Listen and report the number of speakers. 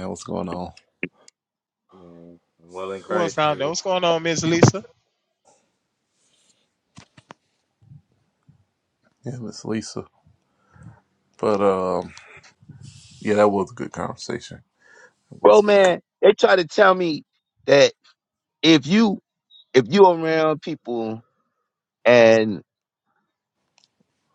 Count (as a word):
four